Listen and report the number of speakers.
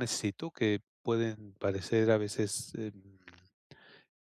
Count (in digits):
1